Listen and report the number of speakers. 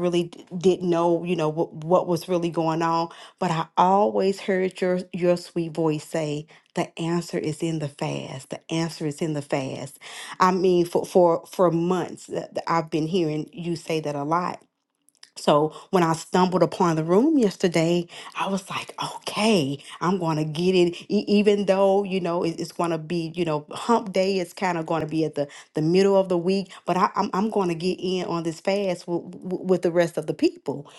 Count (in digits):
1